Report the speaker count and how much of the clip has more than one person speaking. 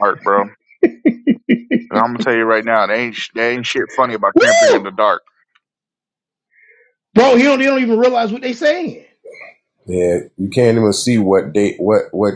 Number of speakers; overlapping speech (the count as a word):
three, about 4%